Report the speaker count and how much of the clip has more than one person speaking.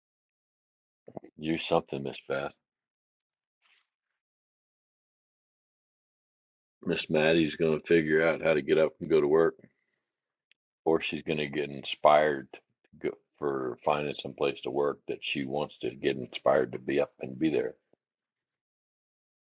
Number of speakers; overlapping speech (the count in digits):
1, no overlap